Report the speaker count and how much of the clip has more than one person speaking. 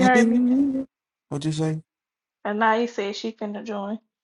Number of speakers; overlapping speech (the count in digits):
2, about 10%